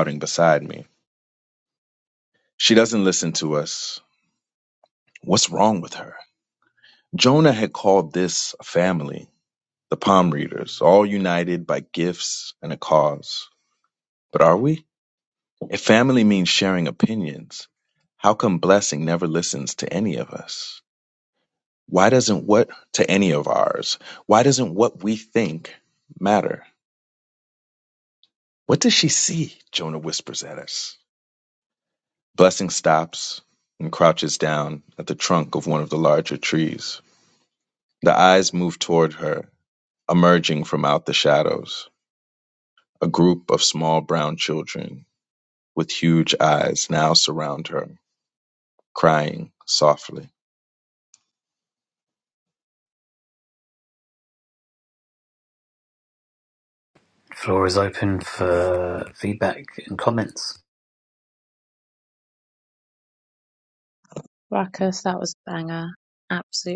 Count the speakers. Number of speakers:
3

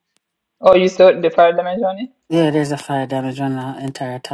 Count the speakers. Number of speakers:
2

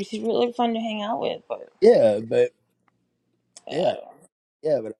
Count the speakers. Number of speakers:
2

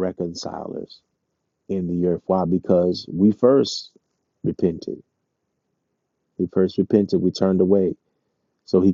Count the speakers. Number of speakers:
1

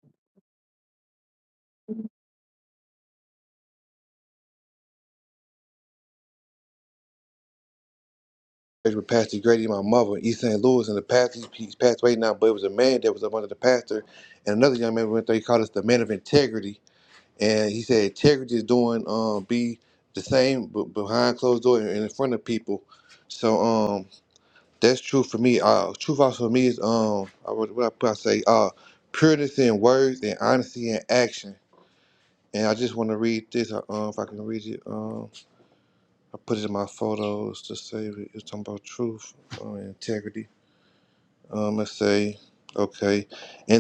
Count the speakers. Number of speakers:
1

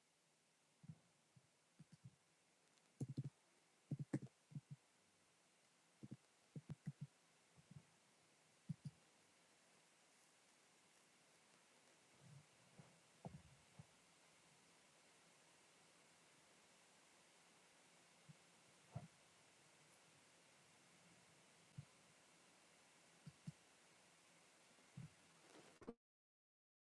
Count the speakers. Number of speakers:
0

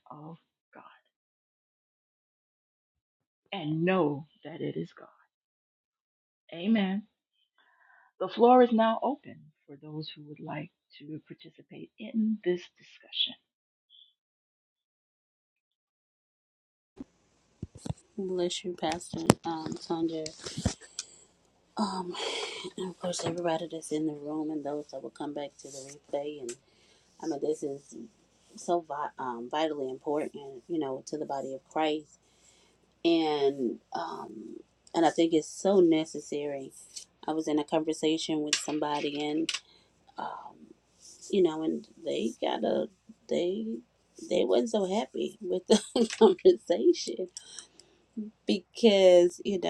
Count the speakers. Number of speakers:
2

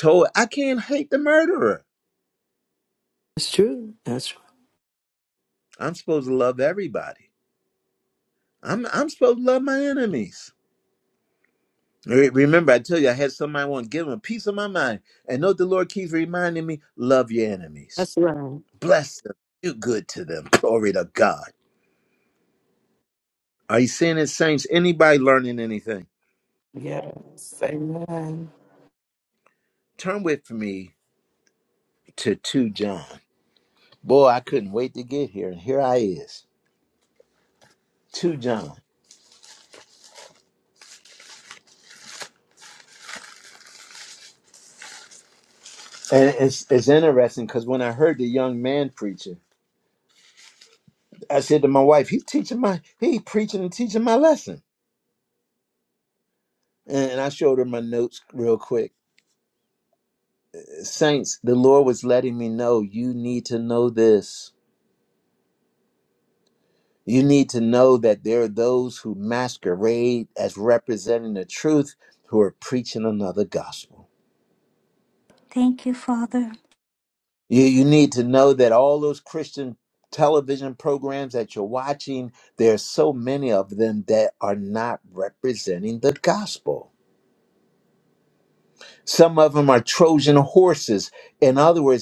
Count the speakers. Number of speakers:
4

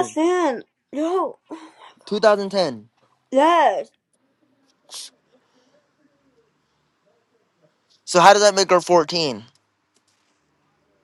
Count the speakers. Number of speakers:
2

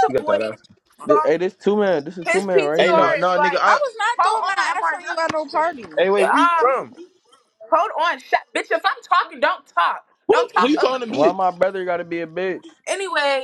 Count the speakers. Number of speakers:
4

